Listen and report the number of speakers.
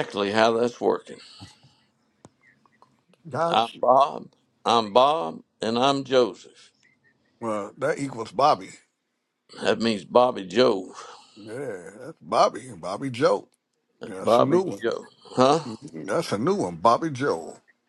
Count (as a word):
two